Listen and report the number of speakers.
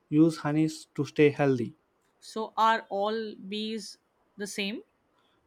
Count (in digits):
2